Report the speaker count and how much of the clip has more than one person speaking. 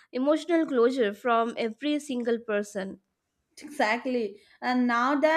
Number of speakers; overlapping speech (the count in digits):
2, no overlap